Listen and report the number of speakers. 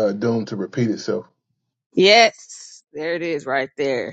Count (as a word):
two